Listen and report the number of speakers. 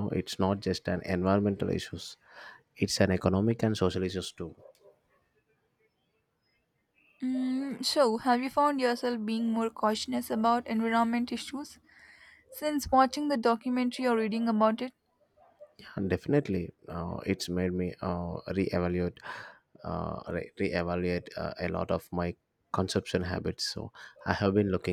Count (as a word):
two